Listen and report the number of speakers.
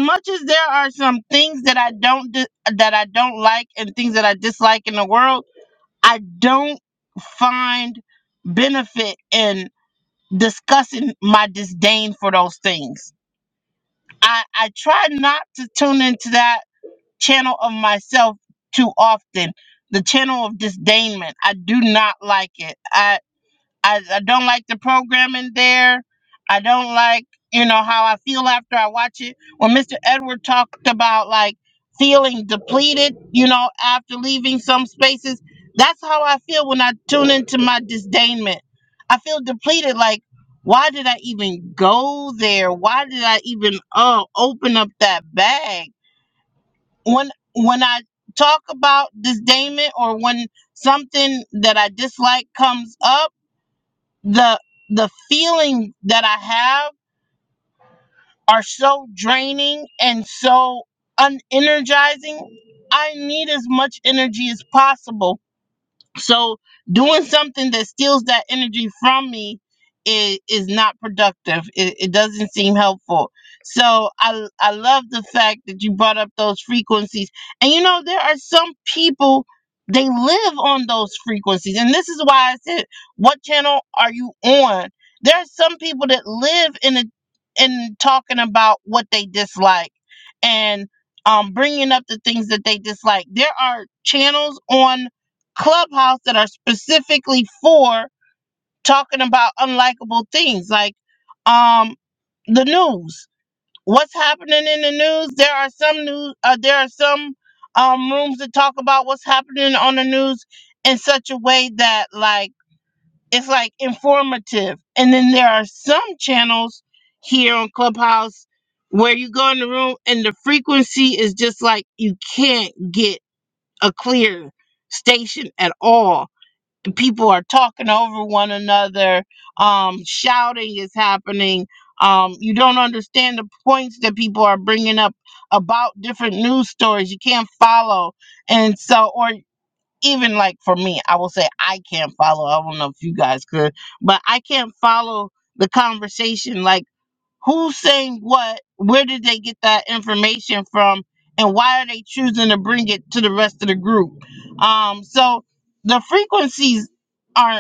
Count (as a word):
one